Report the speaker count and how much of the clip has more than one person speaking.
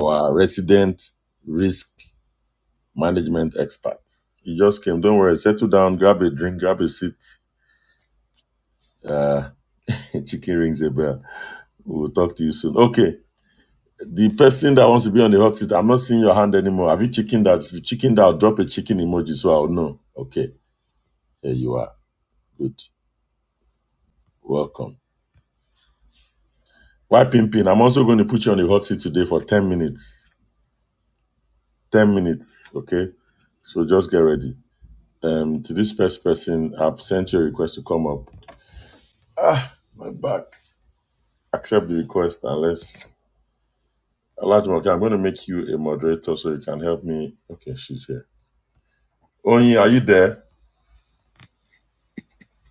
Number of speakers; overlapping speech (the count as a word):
one, no overlap